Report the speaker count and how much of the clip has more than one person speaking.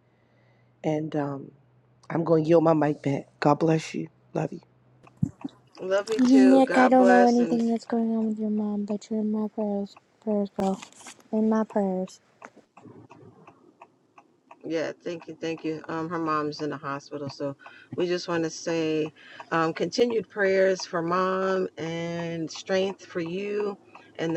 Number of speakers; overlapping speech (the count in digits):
3, about 6%